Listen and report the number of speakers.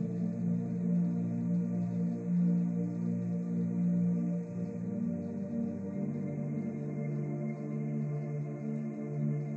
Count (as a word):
zero